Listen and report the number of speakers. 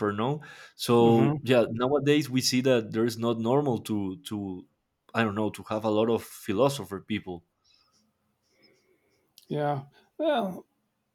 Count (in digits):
2